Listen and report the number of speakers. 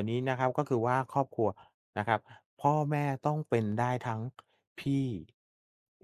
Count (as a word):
one